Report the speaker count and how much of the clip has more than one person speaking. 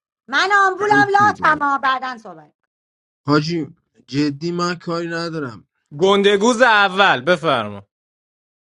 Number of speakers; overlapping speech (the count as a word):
three, about 8%